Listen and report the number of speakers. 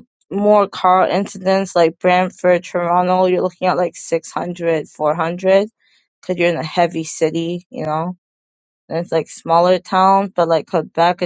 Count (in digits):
1